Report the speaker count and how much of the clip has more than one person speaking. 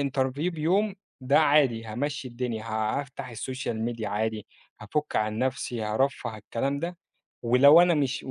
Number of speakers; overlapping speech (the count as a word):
one, no overlap